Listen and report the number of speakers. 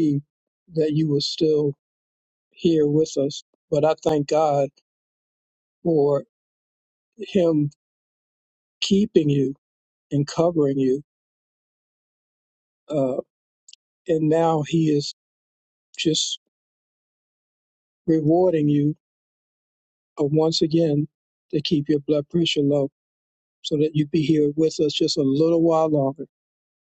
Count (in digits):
1